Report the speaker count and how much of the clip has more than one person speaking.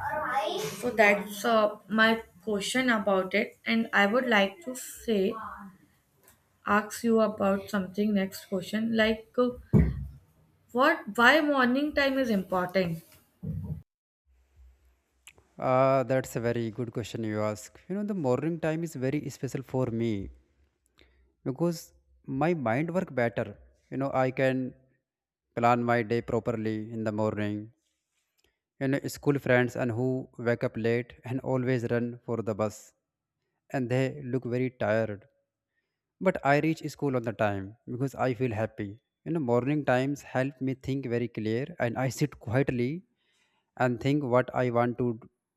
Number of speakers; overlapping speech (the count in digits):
2, no overlap